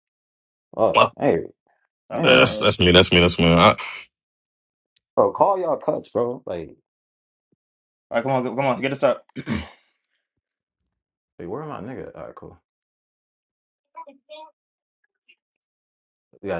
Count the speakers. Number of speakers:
3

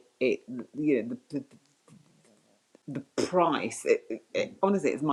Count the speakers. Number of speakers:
1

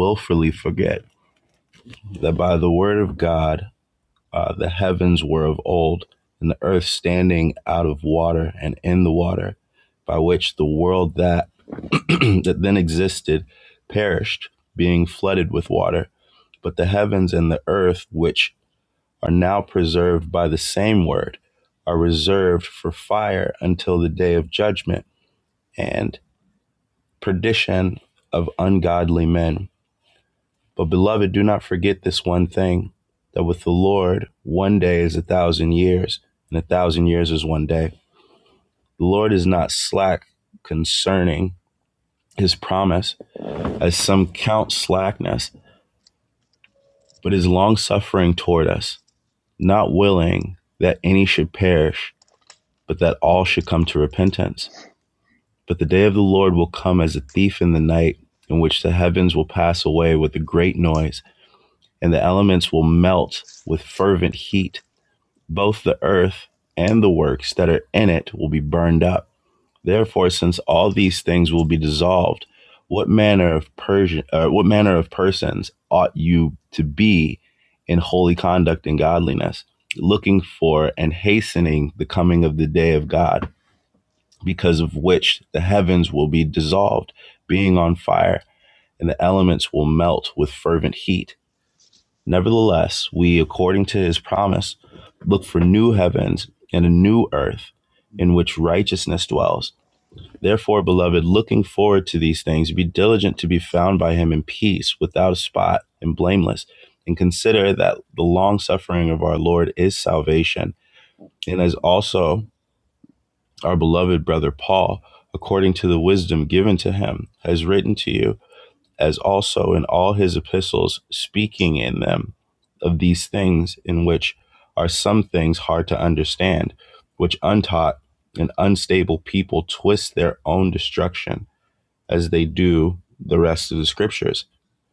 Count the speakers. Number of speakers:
1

